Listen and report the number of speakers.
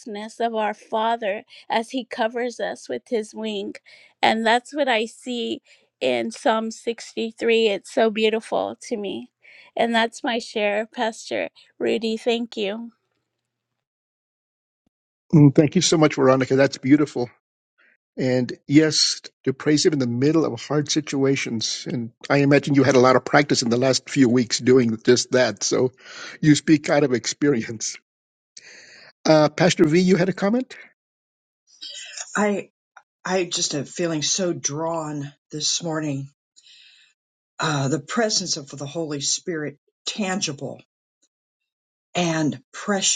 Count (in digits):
3